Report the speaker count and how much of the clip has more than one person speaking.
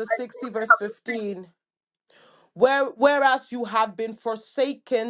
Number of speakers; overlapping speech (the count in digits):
1, no overlap